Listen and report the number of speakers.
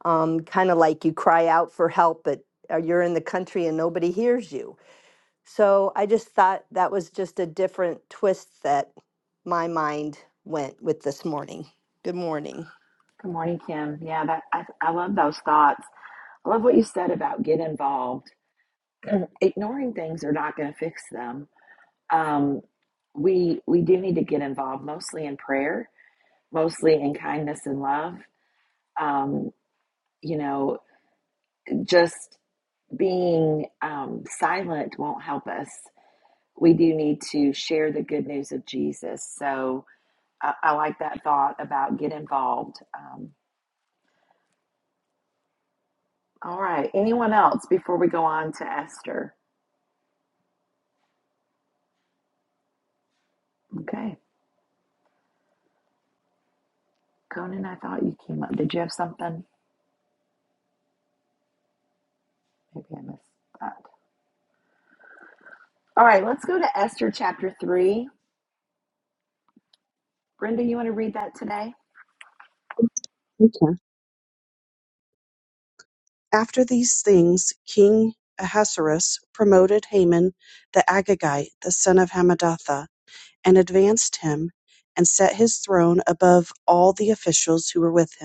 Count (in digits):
3